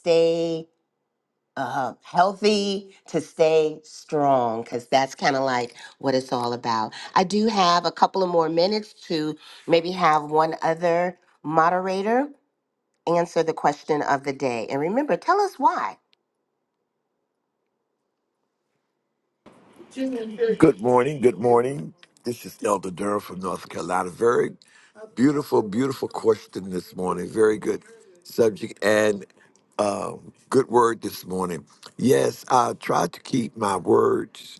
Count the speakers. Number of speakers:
2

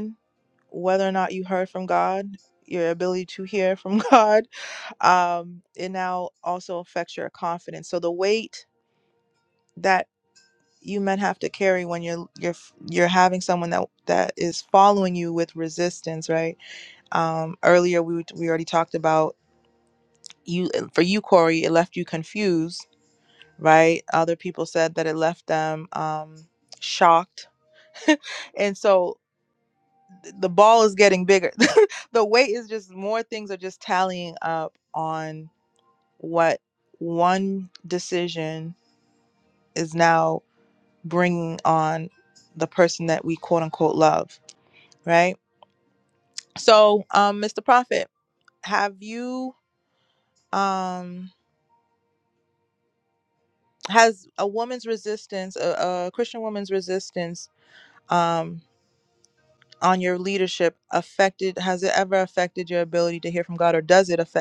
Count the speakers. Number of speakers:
1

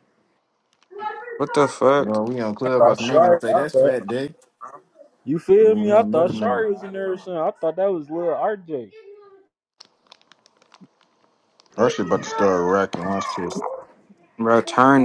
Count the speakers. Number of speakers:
3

